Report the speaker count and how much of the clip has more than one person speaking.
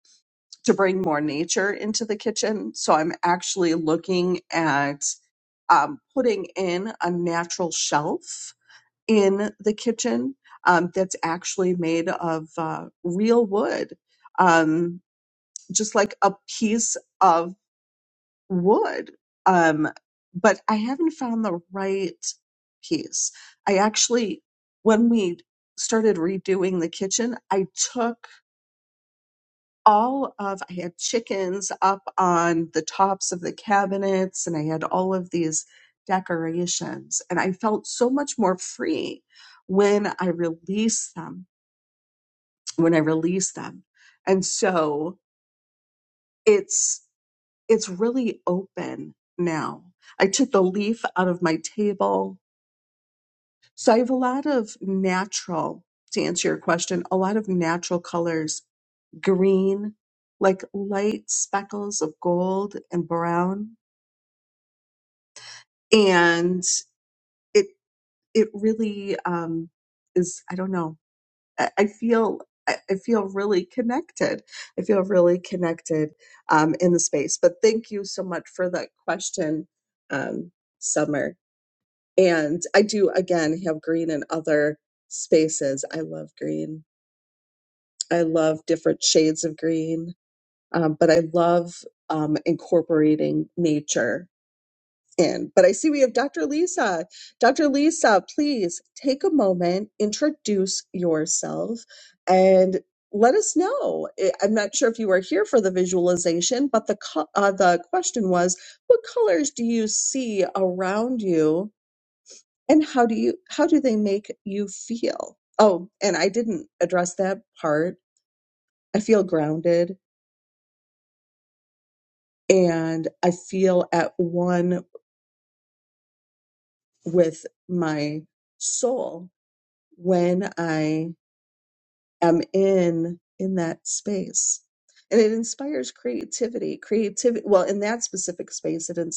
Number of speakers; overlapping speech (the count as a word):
one, no overlap